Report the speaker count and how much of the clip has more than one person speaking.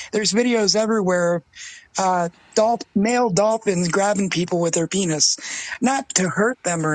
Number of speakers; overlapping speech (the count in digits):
1, no overlap